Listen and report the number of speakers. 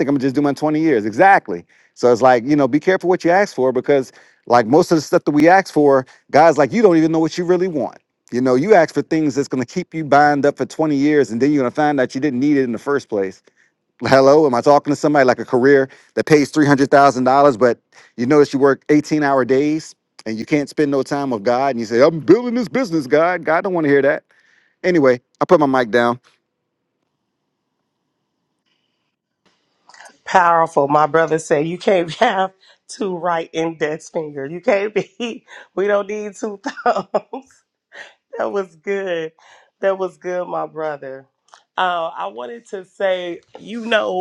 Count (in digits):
2